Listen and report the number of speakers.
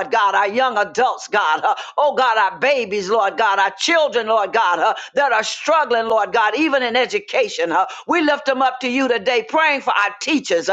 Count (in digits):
1